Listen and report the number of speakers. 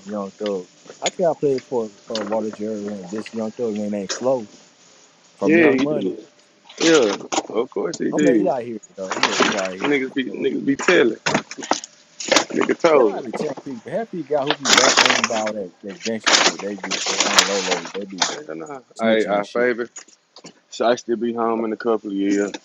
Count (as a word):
two